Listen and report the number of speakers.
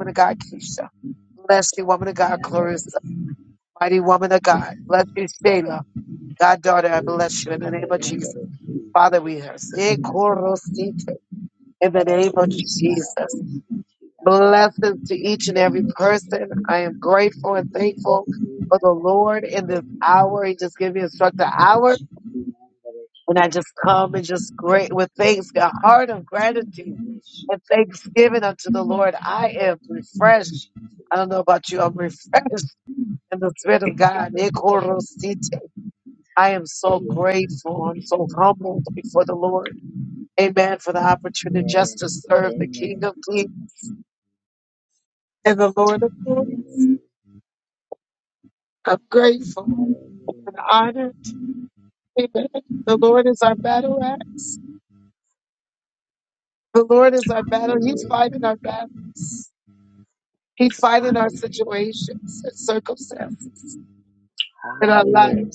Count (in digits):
2